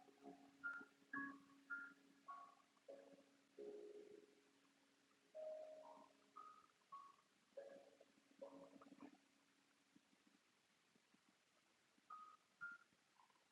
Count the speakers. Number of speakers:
0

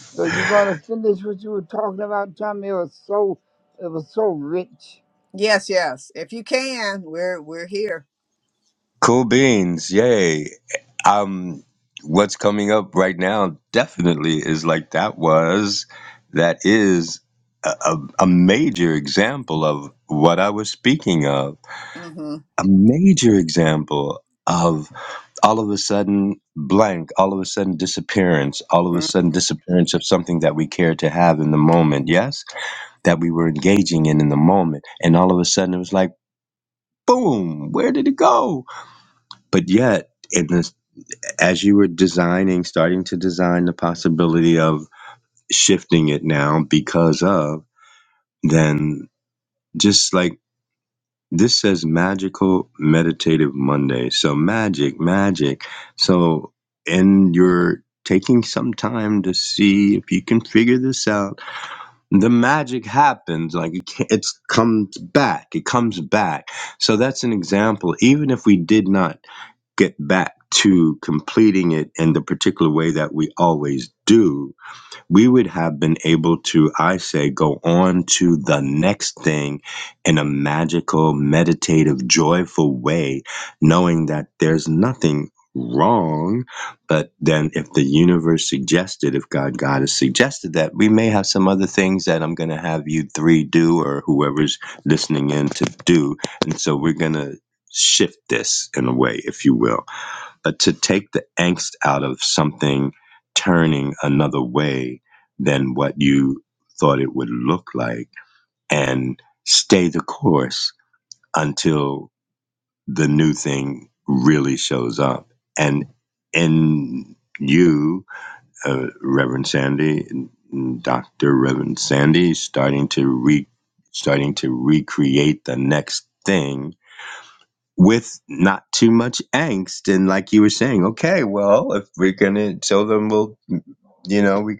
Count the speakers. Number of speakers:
3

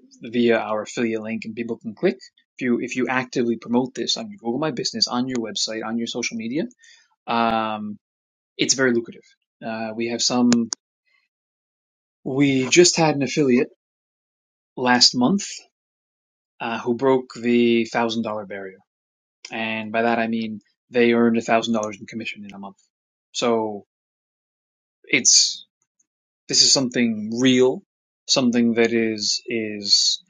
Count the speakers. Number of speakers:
1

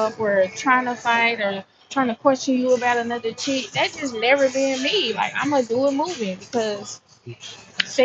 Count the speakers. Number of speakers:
1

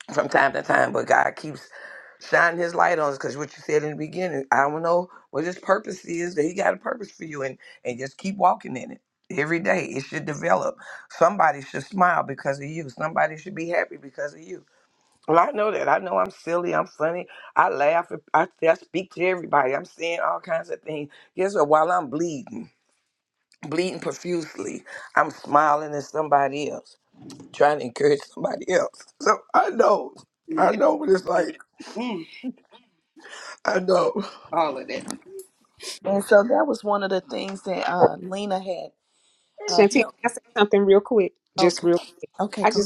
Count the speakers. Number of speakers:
4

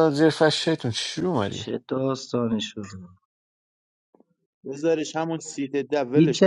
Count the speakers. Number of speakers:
3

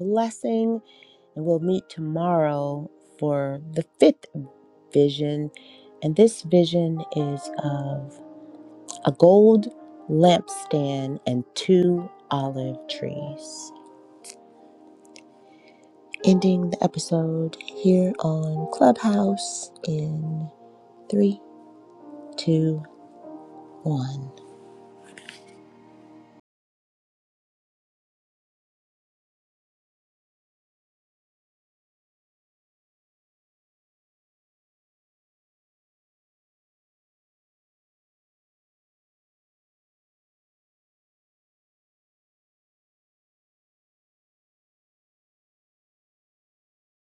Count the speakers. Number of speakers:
1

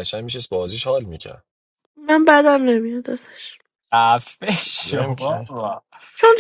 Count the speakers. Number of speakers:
3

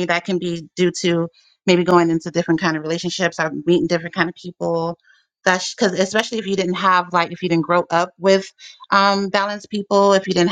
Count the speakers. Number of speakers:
1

